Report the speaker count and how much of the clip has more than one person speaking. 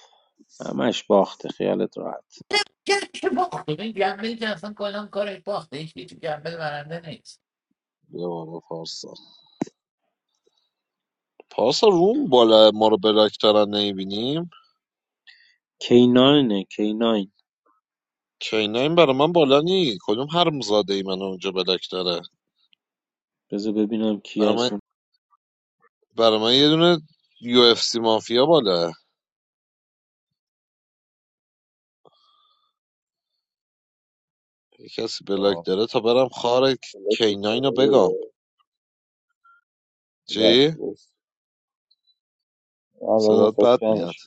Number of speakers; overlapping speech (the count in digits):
4, about 6%